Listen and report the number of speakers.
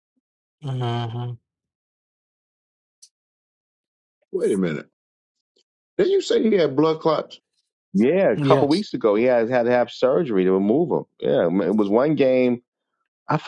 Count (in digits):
3